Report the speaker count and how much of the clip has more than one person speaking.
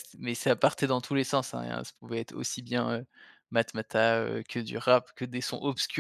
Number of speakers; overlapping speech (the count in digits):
1, no overlap